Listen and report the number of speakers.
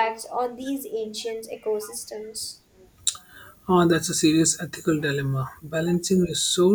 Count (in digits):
2